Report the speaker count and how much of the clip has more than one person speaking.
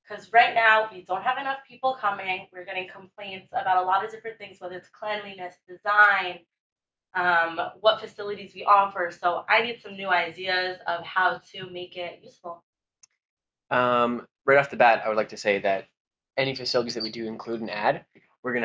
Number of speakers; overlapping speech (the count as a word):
two, no overlap